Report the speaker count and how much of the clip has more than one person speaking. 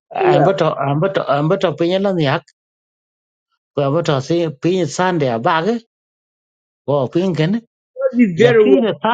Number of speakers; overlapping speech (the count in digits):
2, about 8%